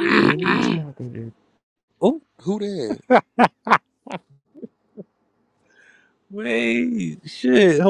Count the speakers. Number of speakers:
three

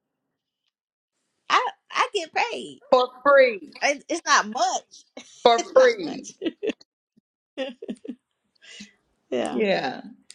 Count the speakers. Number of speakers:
two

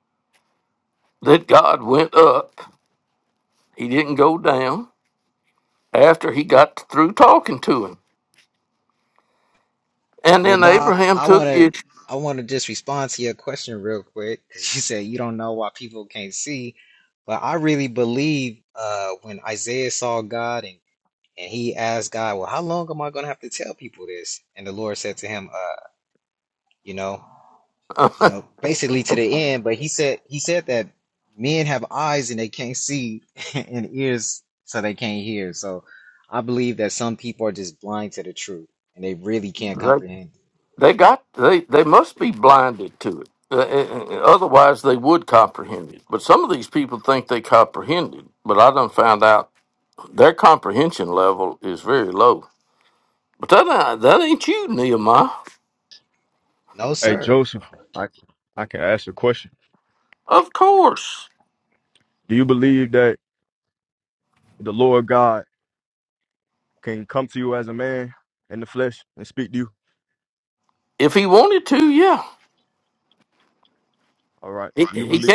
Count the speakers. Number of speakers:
three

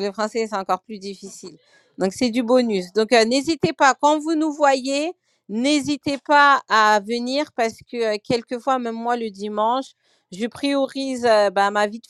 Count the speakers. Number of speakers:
one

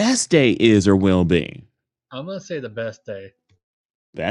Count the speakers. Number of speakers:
two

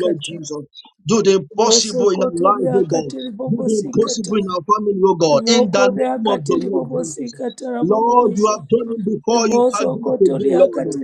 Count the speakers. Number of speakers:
two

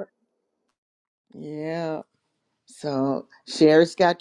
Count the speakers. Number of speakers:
one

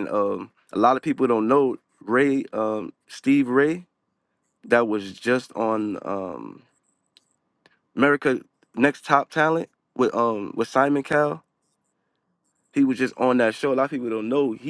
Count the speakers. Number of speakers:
one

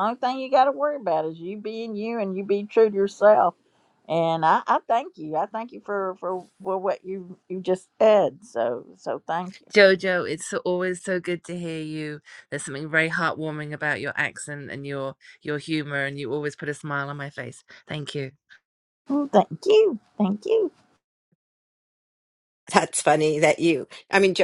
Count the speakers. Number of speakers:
three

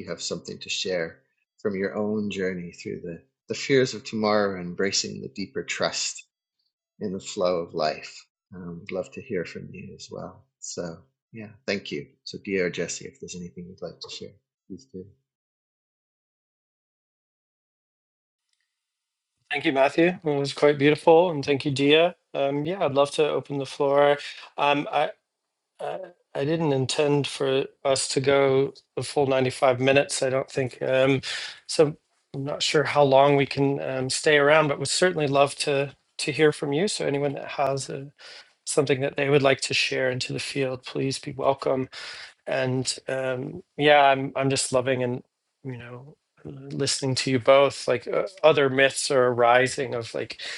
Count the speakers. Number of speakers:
two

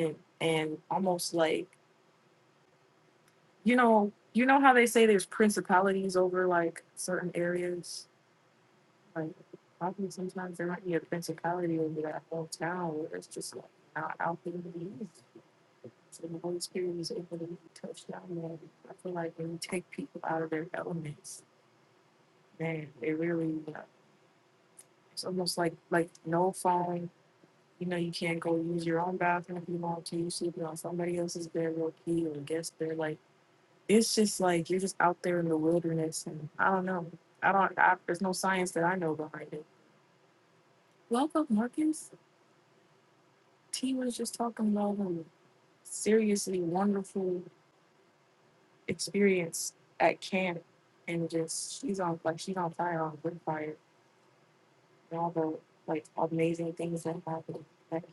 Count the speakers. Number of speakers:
one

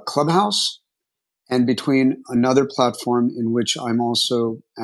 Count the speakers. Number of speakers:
one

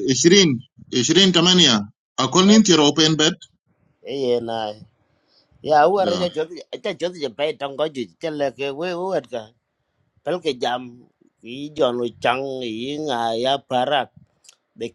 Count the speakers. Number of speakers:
two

